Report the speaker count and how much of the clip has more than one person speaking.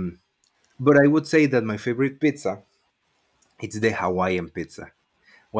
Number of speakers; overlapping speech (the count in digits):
1, no overlap